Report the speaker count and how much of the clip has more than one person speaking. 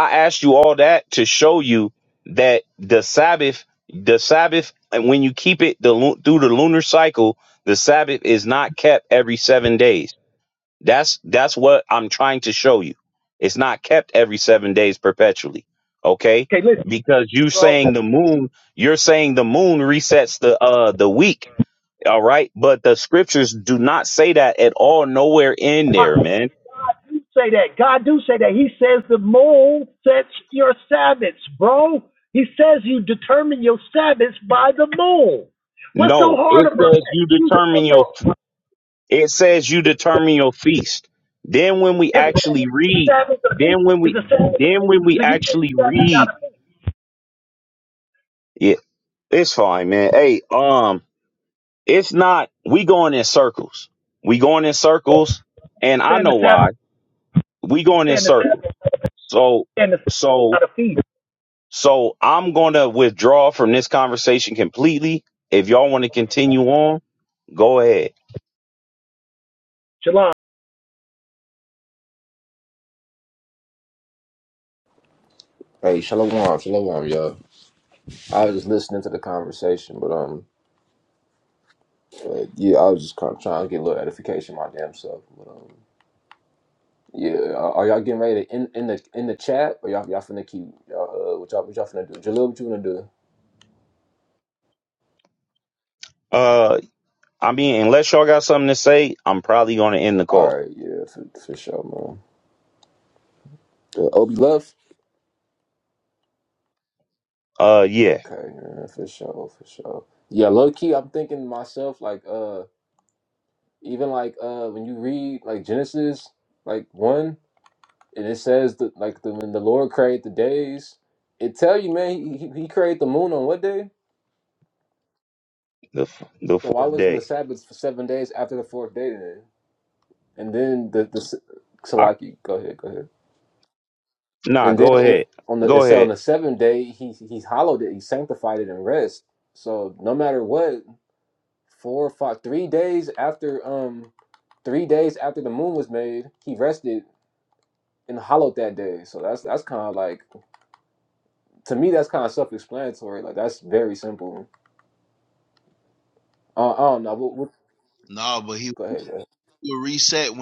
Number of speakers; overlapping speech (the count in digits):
4, about 5%